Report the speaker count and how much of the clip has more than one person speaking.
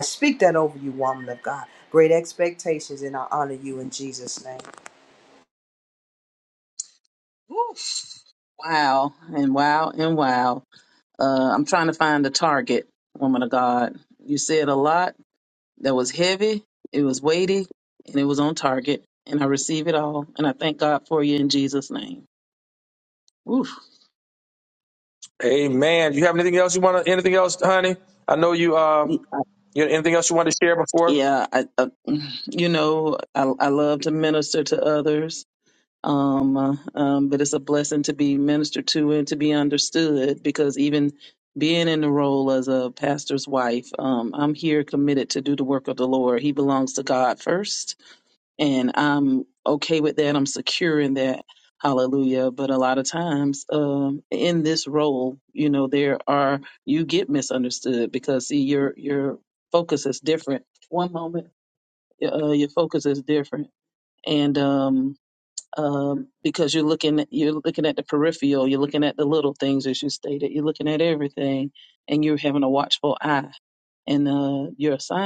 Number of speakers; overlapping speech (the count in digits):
3, under 1%